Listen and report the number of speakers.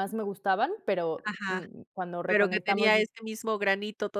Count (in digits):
2